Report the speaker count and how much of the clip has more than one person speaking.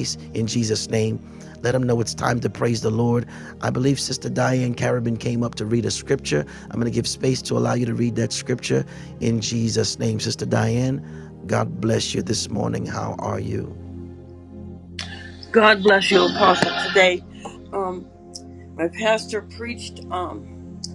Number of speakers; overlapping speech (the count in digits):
2, no overlap